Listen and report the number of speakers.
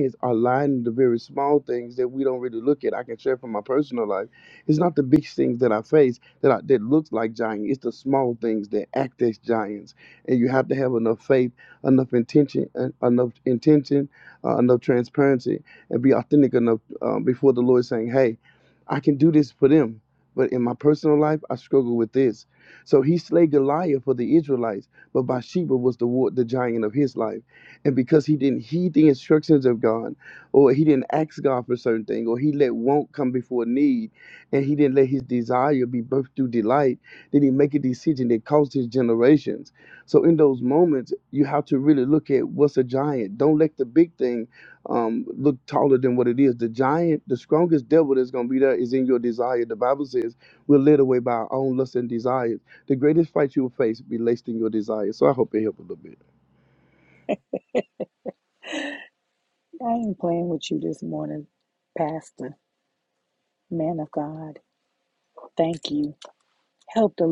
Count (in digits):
2